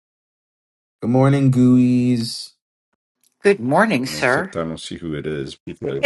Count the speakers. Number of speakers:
3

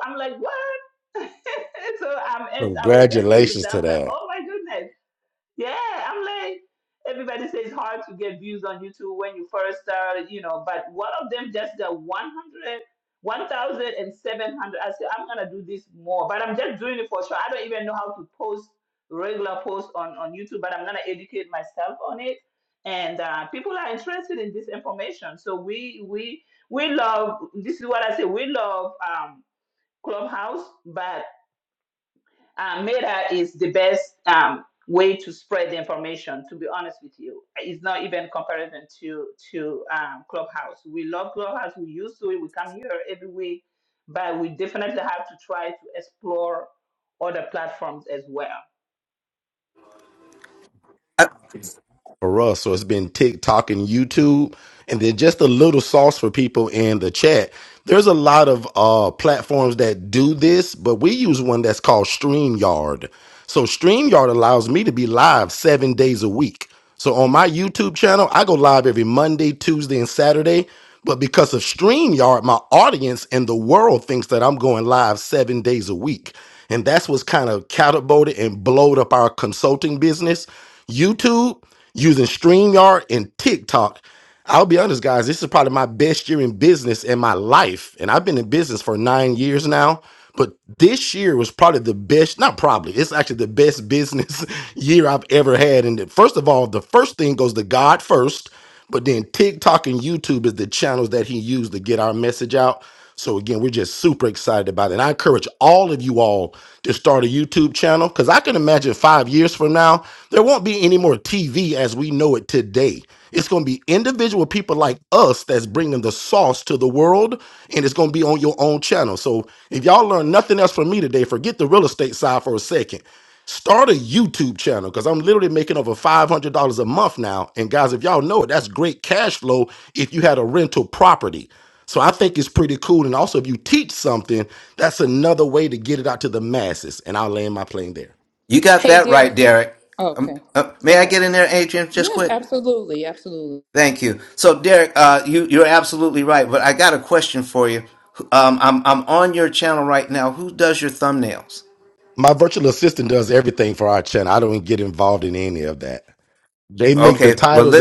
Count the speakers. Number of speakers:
4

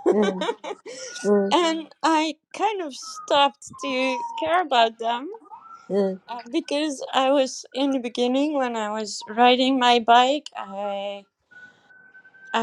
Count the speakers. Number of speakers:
2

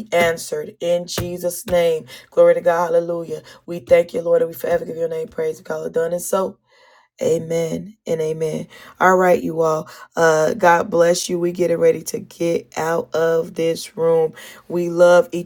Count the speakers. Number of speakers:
1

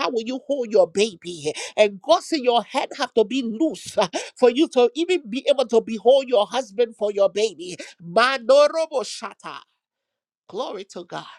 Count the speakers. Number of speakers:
1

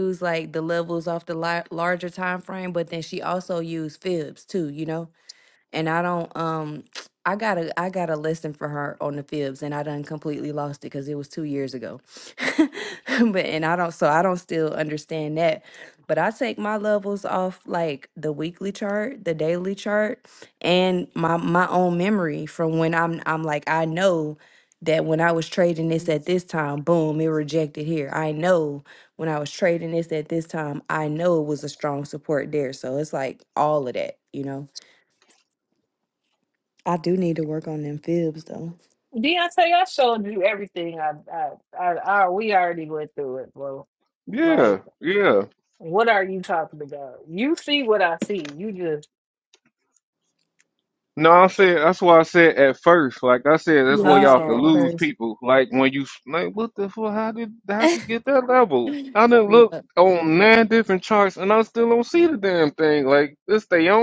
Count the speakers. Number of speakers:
3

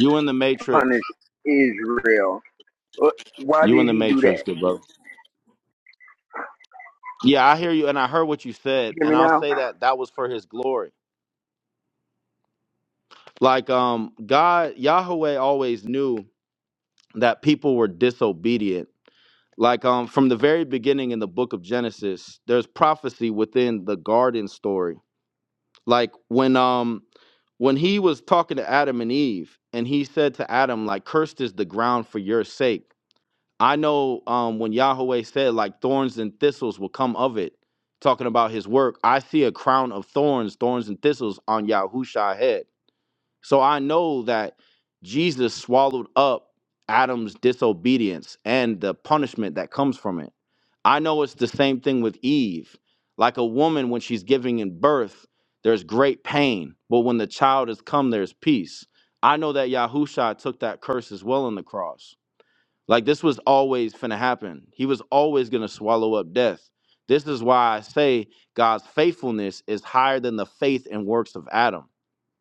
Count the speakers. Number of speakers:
2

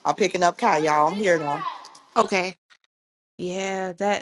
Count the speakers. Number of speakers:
2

